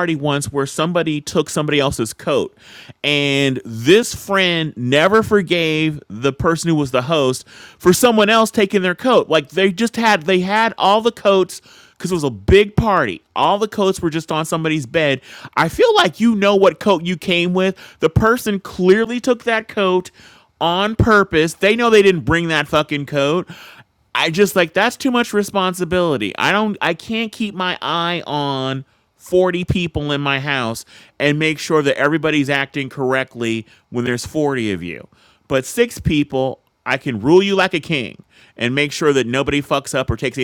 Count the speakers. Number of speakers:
1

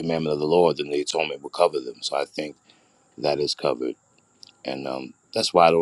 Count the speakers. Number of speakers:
1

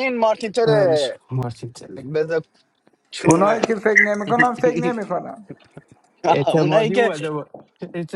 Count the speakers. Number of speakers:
3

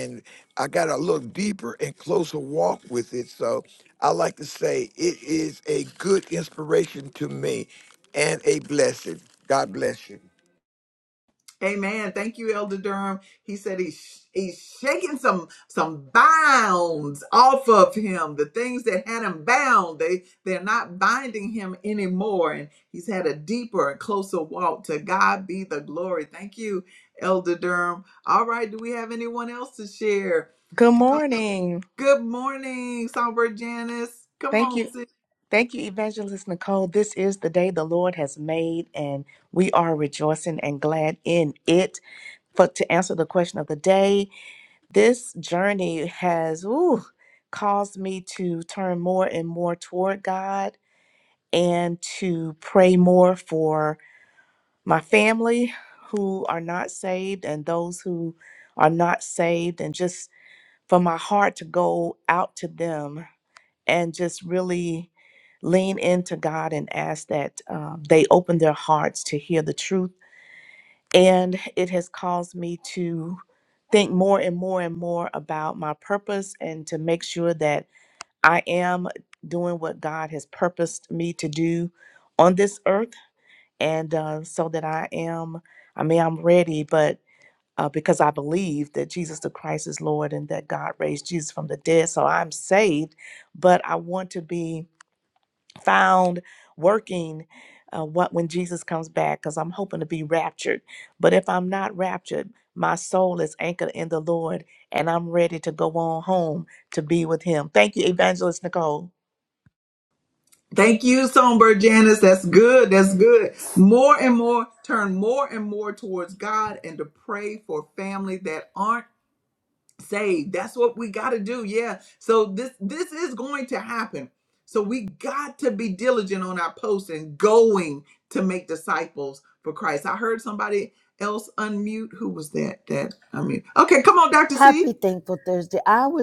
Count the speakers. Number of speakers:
4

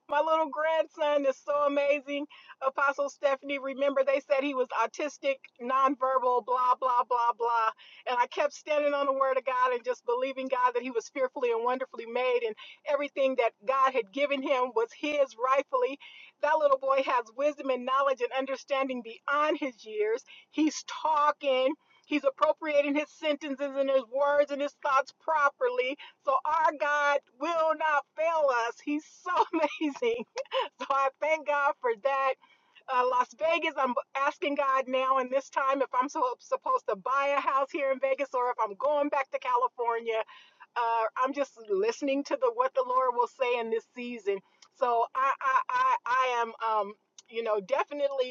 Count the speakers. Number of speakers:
1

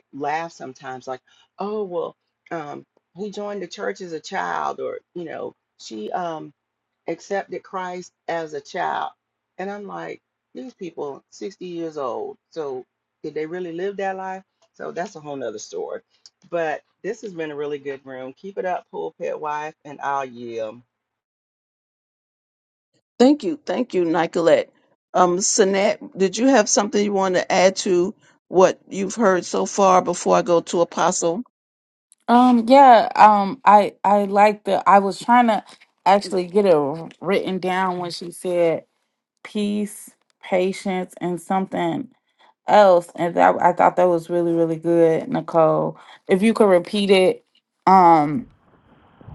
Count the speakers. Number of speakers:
3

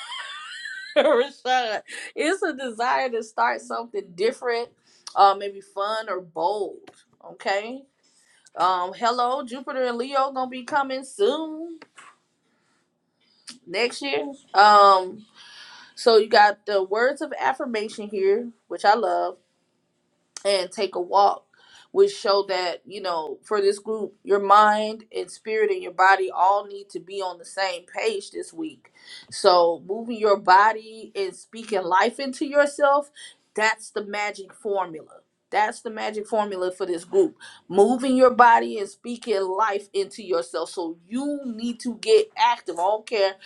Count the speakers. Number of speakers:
1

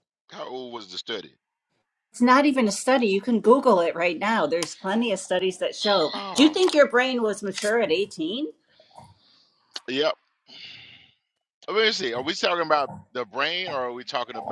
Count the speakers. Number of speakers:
2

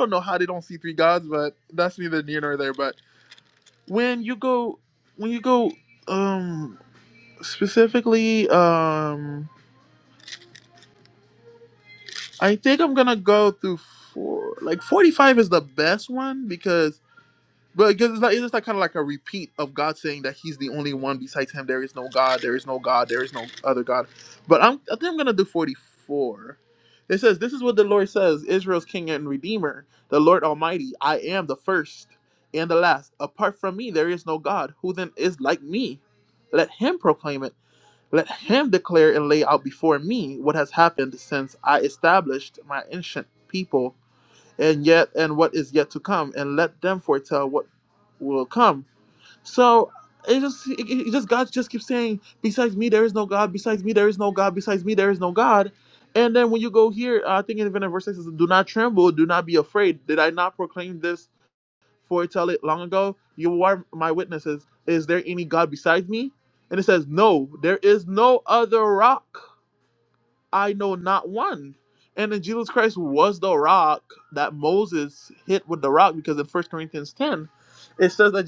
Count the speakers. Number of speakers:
1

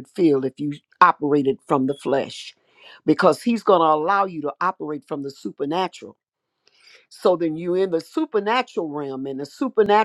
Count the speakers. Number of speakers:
1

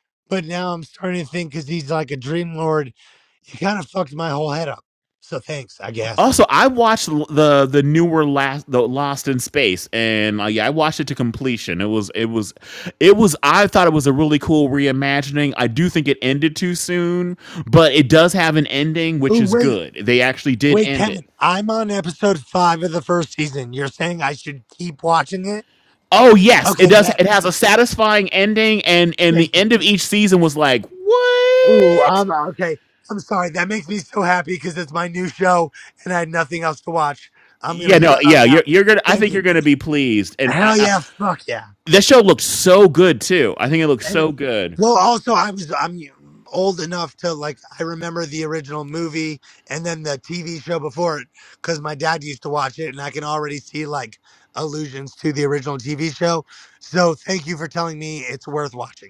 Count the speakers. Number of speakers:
2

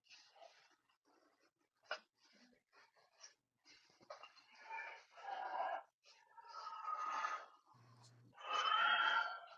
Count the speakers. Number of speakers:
0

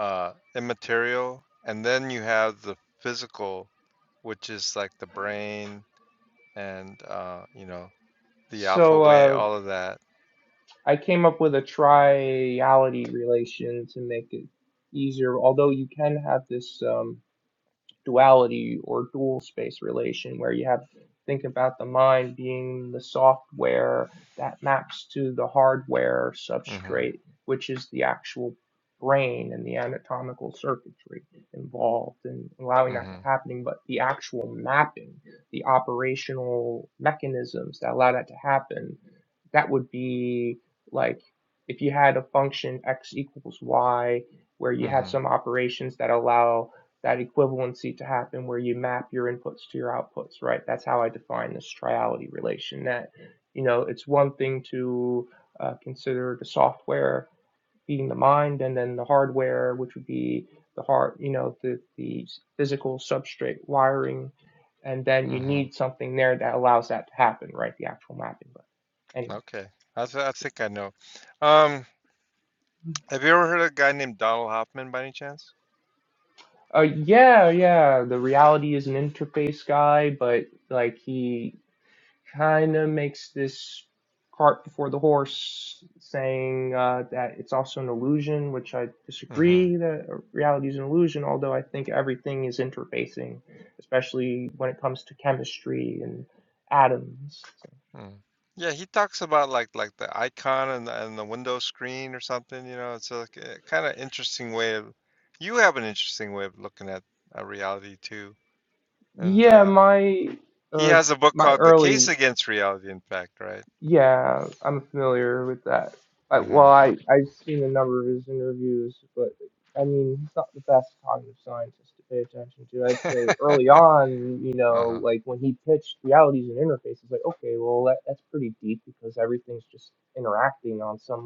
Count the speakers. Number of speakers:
2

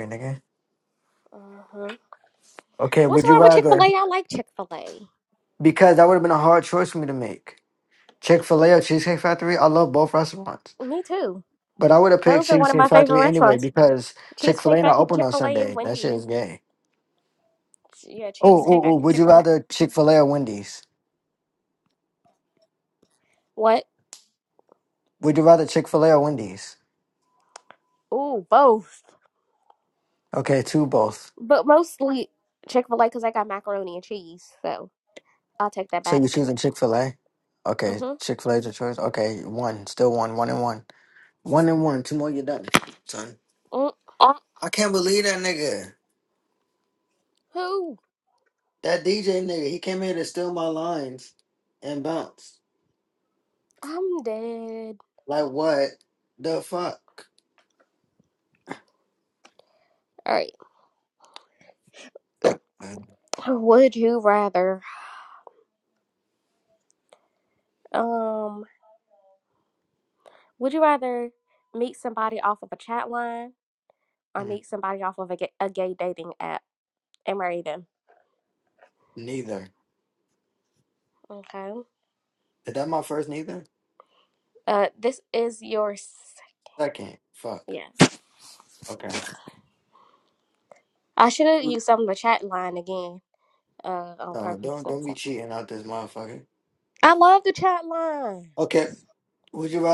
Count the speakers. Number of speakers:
2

